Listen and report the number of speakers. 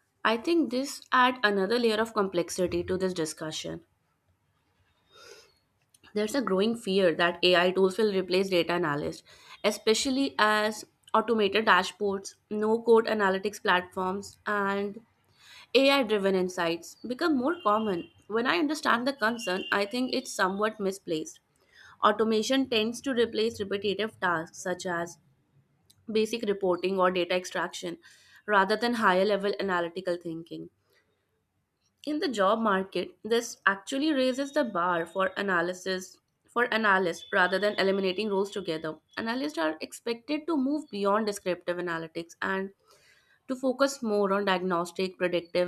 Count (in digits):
1